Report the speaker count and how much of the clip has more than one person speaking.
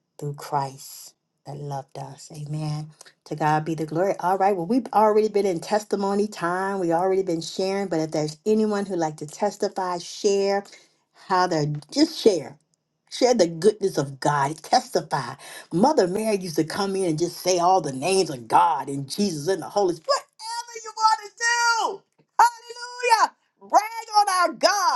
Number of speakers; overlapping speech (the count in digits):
1, no overlap